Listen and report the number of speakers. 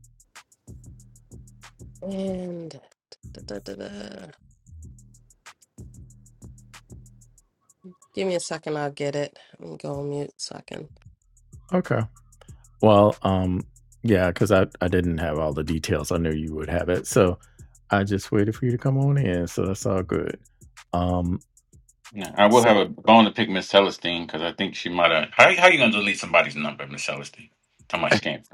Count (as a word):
three